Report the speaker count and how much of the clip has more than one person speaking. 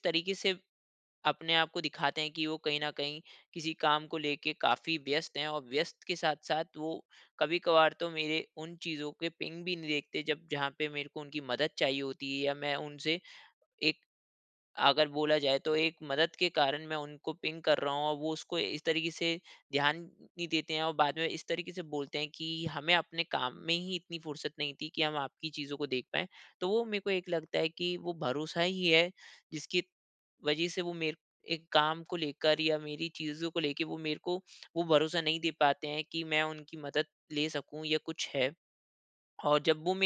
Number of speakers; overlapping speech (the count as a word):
one, no overlap